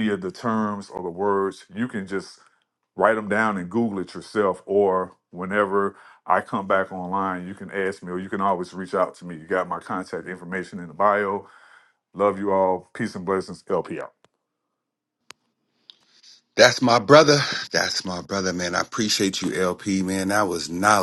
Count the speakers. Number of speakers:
two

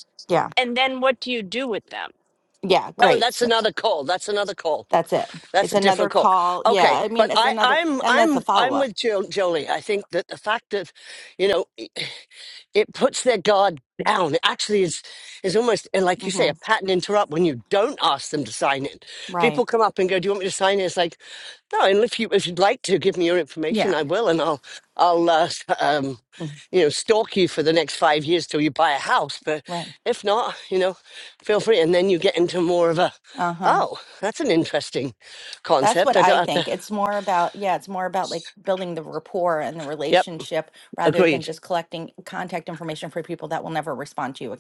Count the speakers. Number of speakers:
three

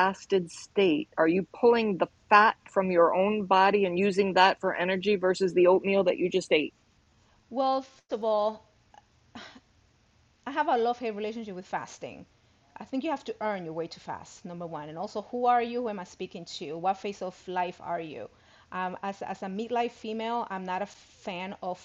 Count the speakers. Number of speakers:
two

